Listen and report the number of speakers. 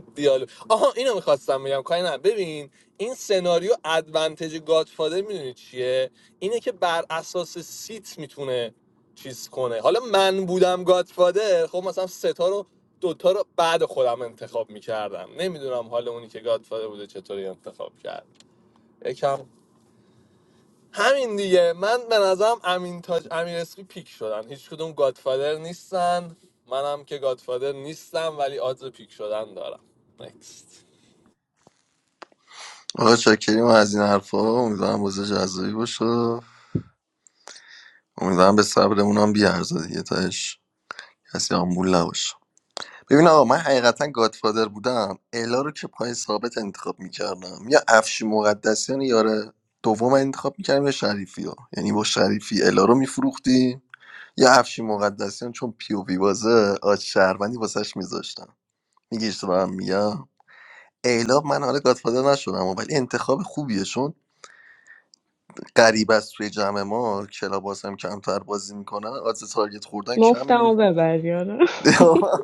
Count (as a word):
three